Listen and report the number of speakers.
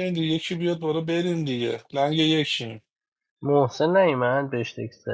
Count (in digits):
2